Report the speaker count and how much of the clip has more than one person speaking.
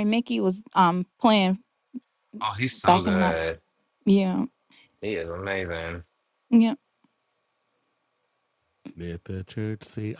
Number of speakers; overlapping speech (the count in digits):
3, about 5%